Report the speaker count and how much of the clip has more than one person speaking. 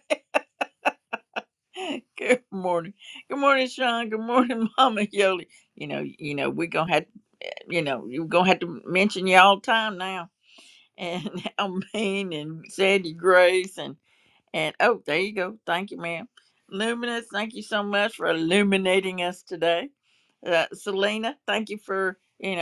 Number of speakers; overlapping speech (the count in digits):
1, no overlap